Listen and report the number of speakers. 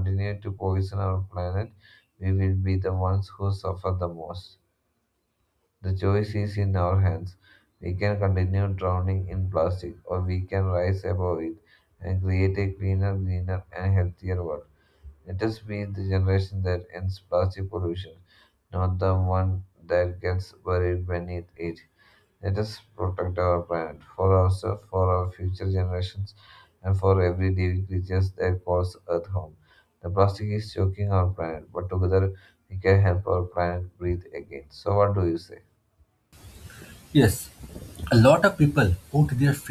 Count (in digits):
2